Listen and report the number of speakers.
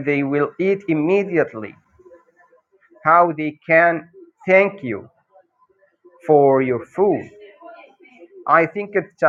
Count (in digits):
1